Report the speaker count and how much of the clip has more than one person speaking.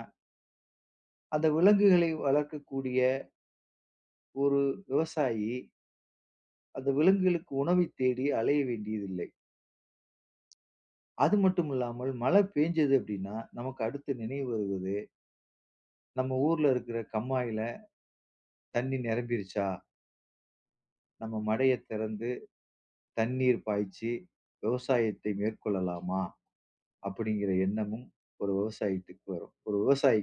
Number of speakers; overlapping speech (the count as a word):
one, no overlap